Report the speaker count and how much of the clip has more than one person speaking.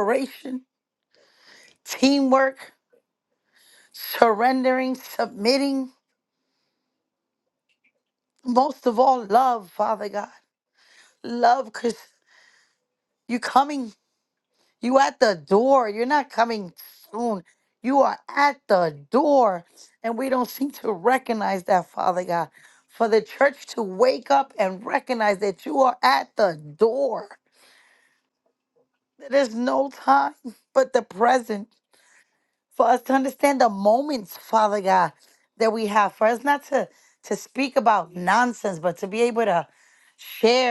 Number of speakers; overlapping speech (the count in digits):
1, no overlap